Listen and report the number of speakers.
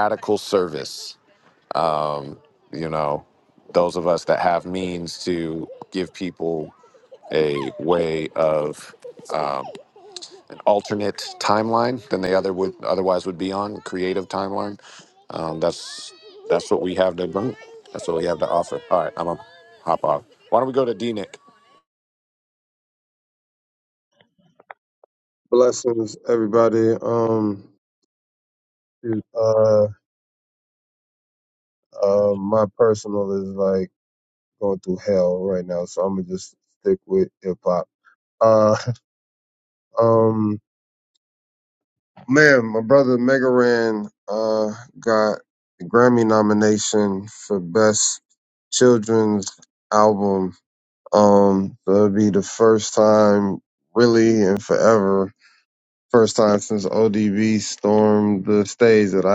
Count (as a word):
two